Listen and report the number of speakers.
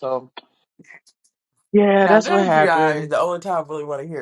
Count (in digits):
2